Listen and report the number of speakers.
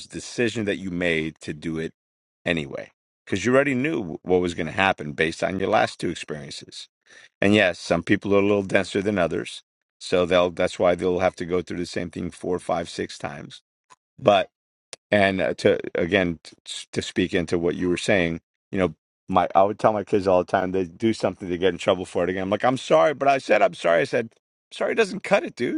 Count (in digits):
1